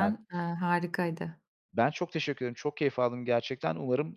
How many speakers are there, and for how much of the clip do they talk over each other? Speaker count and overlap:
2, about 3%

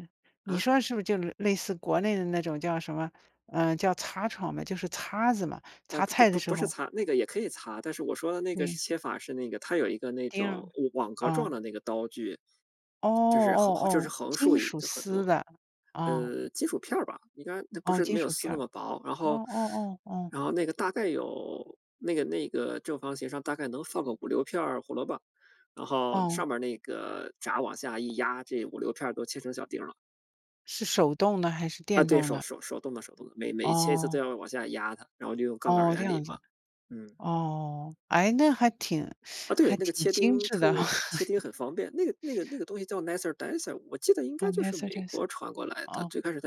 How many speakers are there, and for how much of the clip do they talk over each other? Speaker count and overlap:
2, about 20%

